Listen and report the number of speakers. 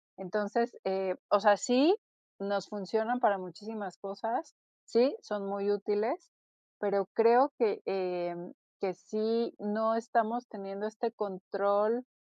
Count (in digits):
1